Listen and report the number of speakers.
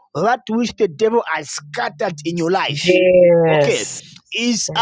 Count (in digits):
2